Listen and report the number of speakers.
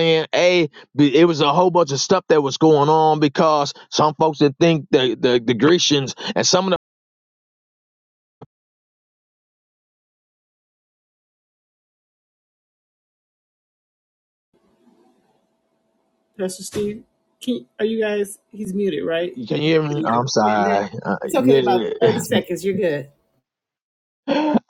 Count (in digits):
2